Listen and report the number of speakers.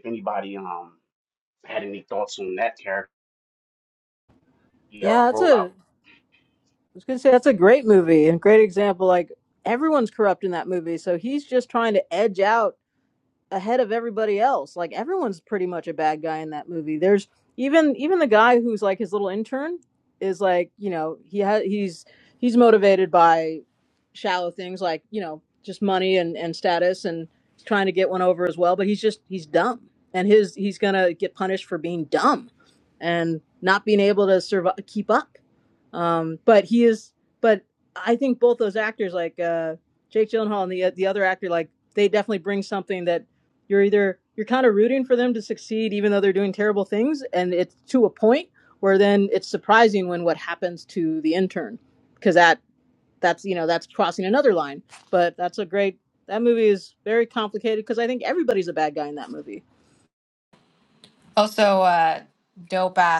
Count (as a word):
three